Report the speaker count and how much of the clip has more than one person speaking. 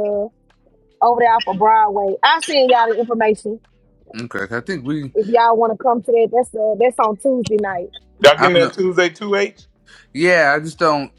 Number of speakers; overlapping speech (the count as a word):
three, about 3%